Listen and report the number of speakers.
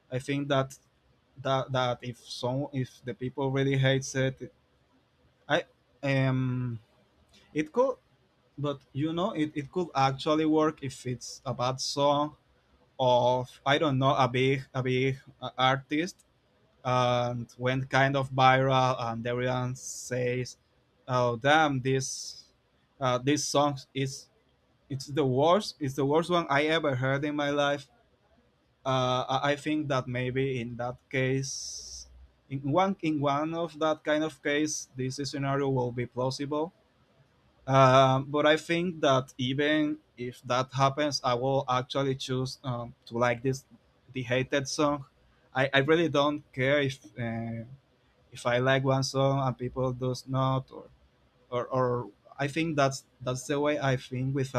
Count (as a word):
one